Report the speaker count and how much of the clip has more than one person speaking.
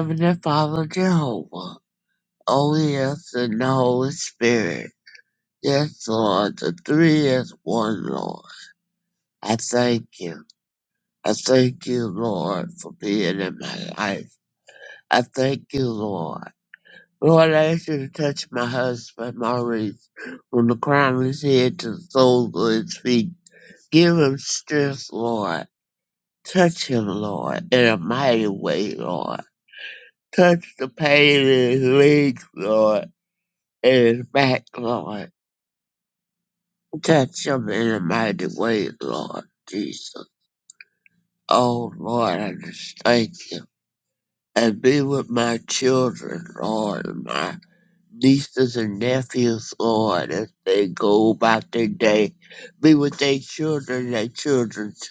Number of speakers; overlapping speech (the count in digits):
1, no overlap